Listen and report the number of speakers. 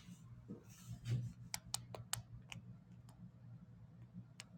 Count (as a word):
zero